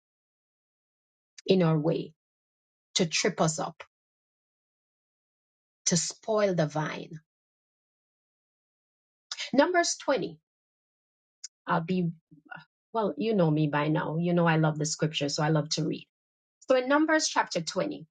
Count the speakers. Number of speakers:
1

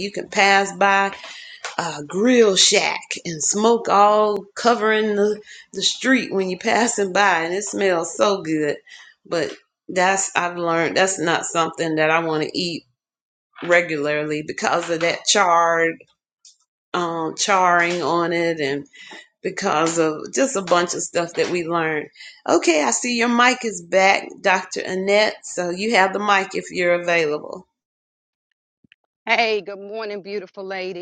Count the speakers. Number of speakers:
2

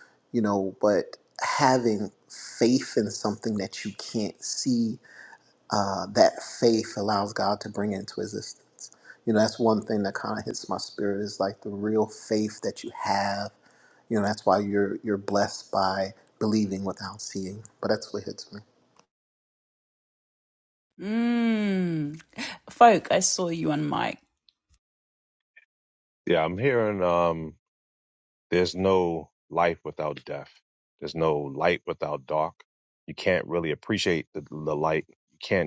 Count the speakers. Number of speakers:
3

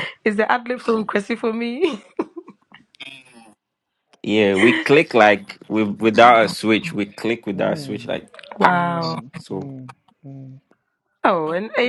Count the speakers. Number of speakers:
3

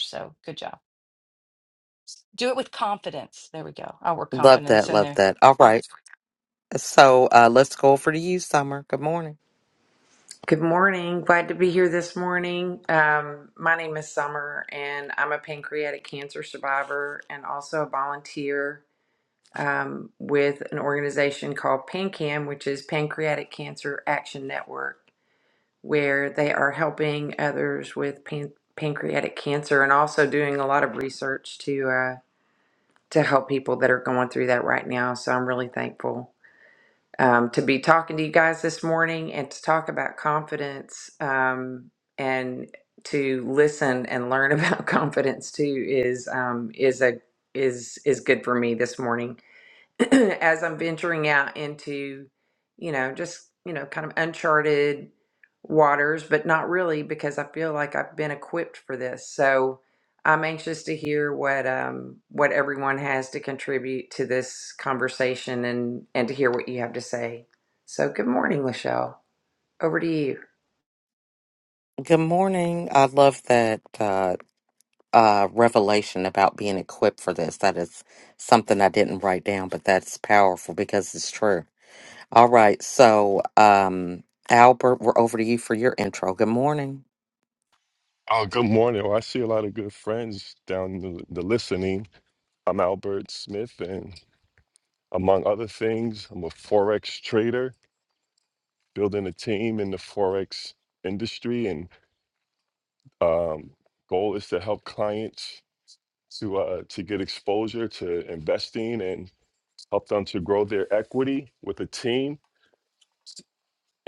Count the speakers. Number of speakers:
4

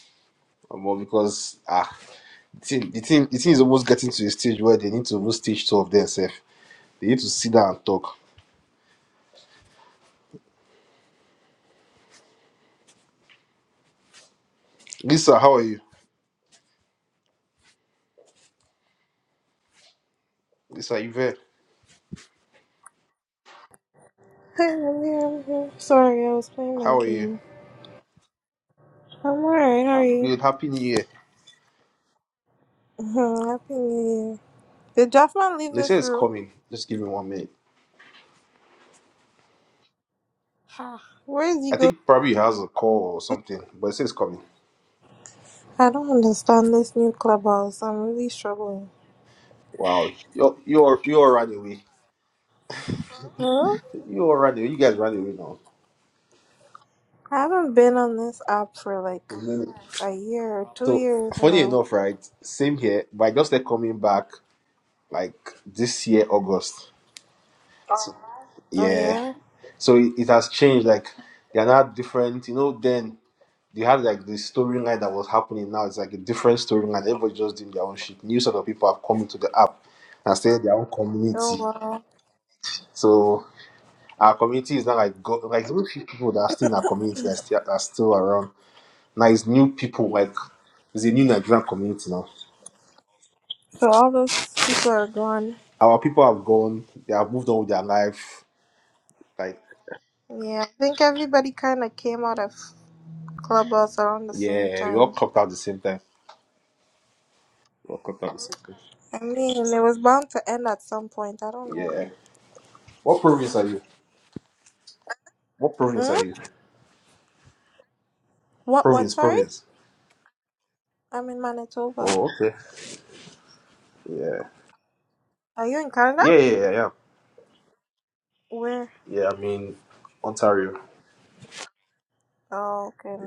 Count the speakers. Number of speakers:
2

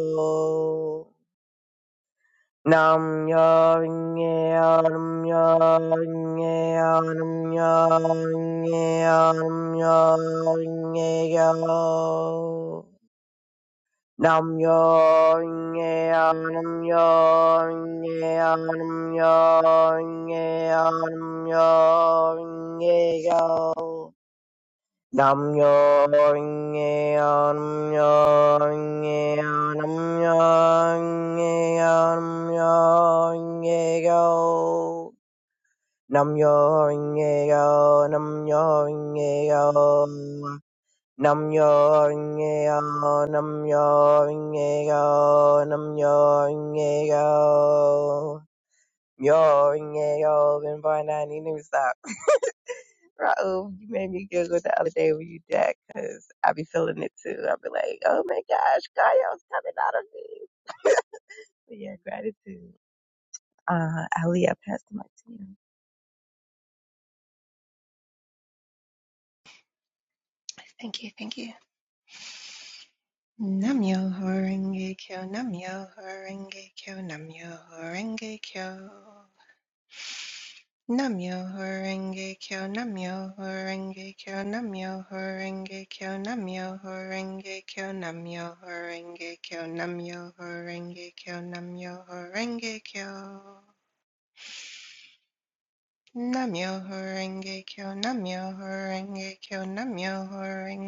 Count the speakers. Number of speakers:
2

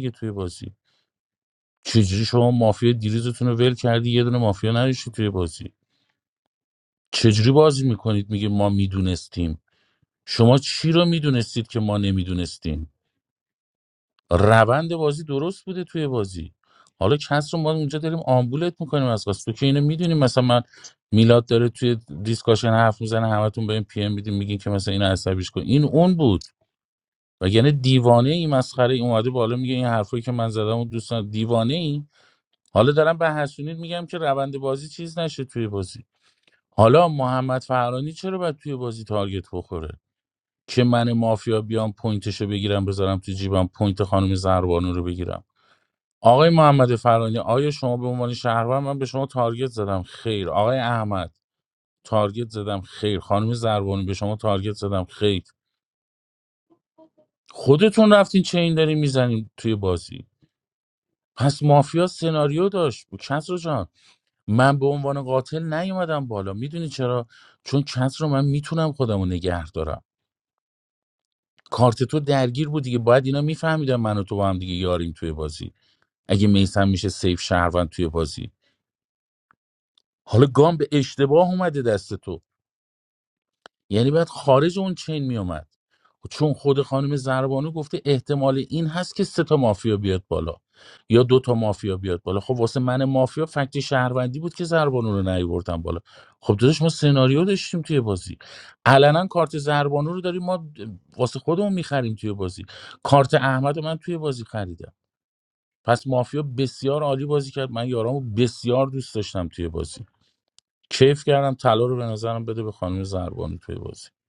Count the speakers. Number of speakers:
1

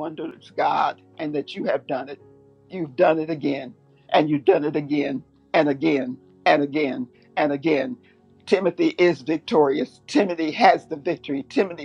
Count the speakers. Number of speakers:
1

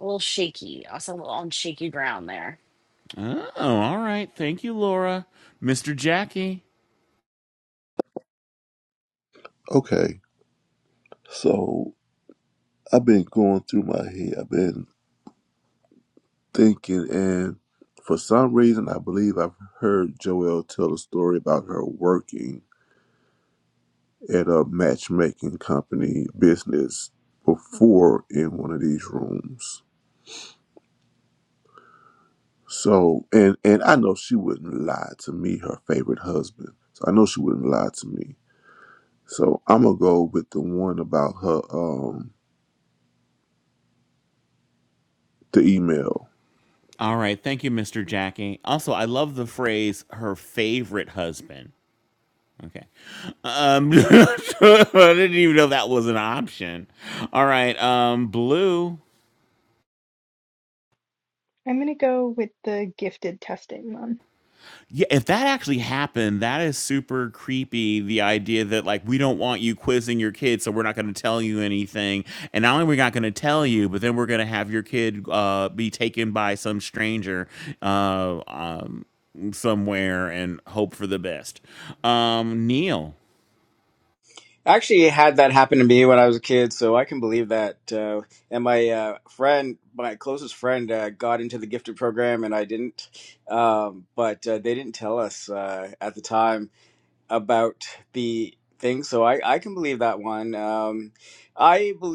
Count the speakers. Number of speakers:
5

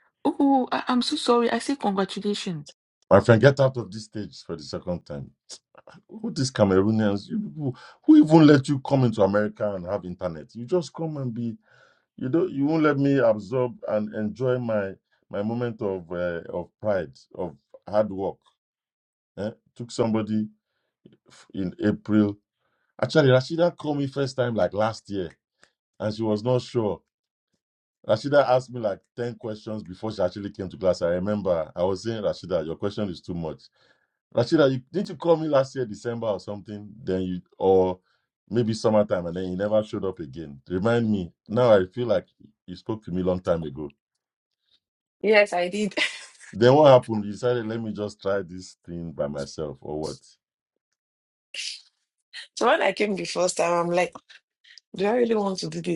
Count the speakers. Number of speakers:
3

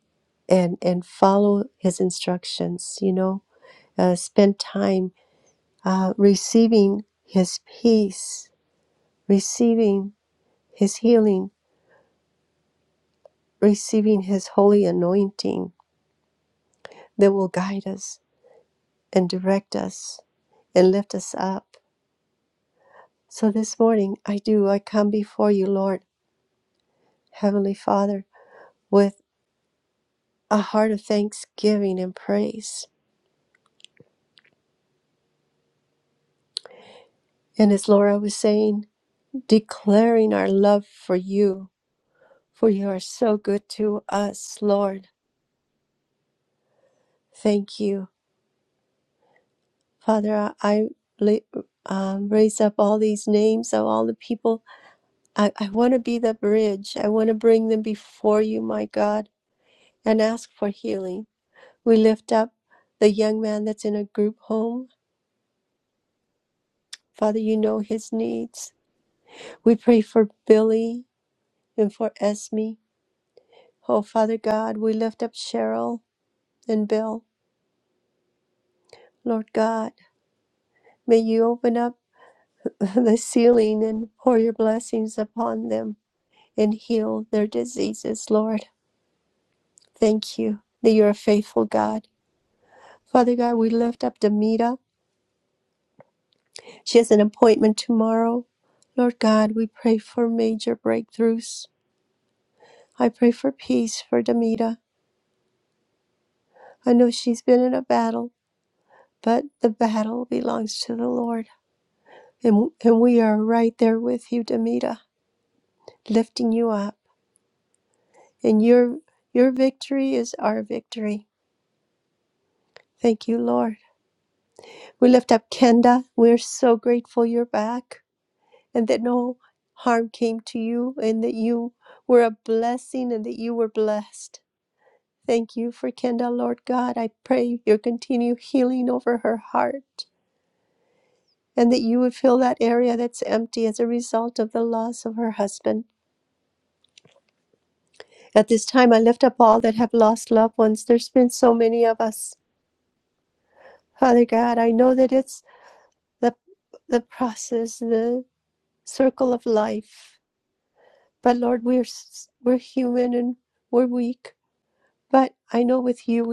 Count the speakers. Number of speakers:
1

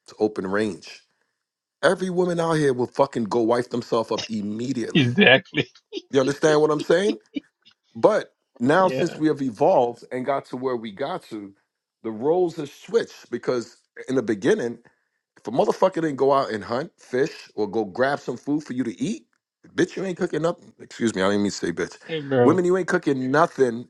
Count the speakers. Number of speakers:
2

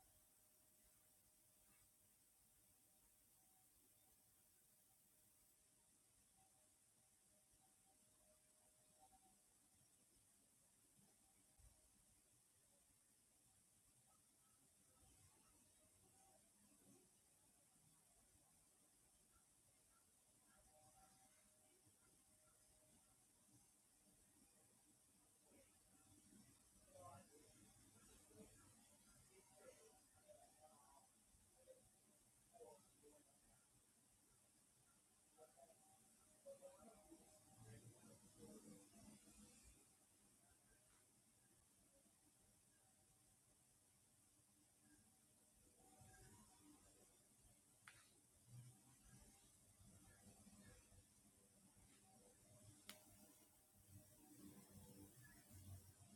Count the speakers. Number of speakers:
0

